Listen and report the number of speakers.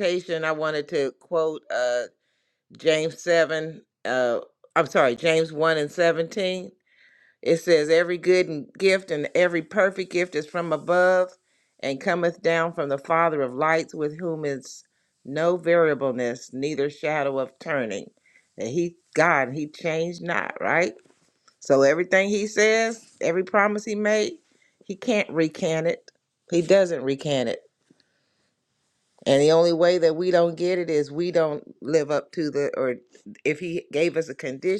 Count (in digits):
1